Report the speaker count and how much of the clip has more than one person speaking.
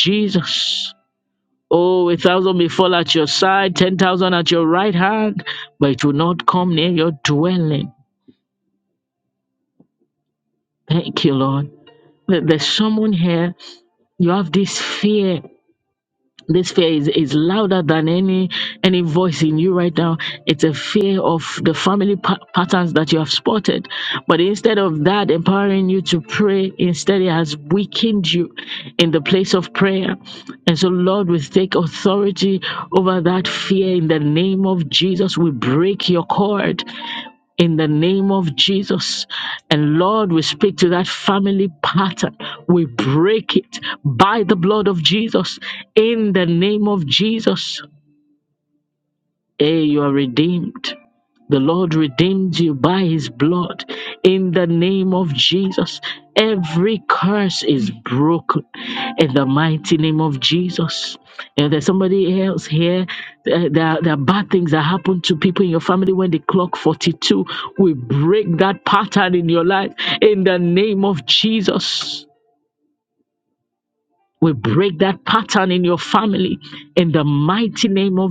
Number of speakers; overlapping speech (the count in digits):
1, no overlap